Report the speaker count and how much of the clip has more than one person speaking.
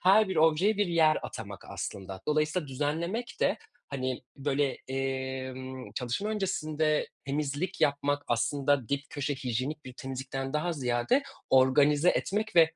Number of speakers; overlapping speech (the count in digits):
1, no overlap